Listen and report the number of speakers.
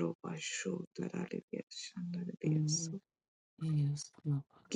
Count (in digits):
2